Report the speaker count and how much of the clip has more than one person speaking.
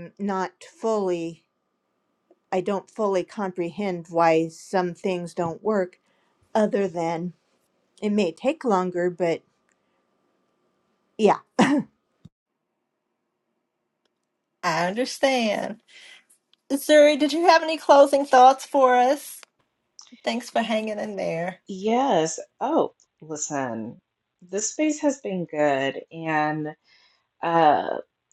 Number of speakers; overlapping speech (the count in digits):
3, no overlap